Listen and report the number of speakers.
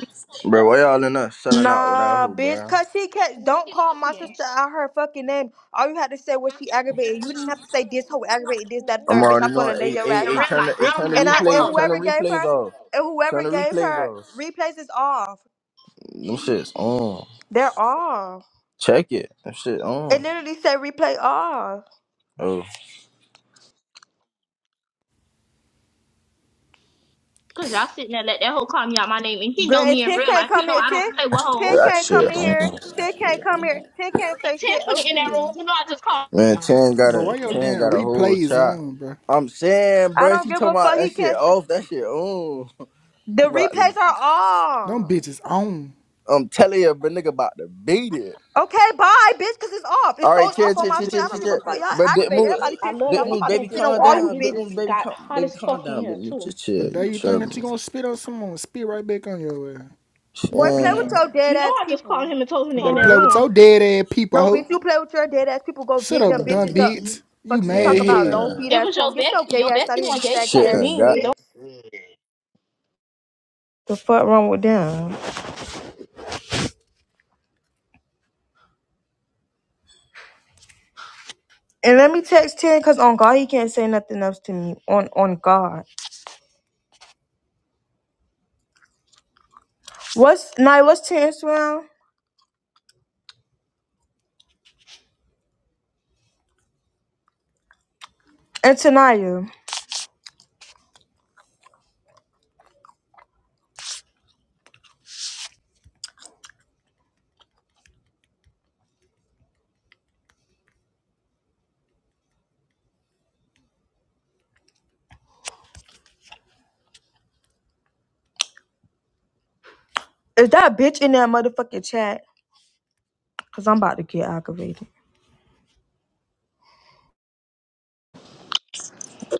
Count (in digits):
4